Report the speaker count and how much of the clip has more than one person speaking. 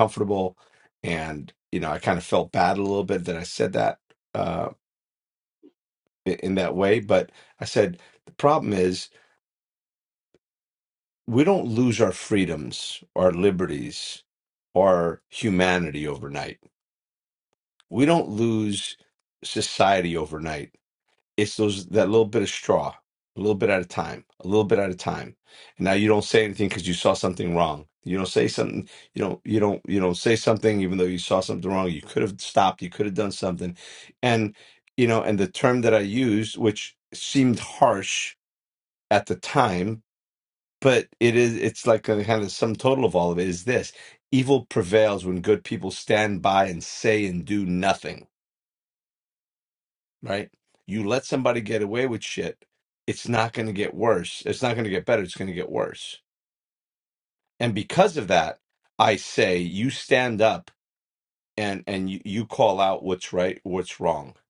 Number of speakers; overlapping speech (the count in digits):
1, no overlap